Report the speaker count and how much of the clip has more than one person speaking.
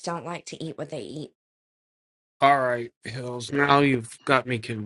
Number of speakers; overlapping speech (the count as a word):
two, no overlap